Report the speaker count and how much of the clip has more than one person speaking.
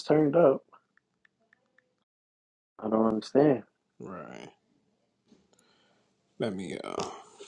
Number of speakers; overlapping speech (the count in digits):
2, no overlap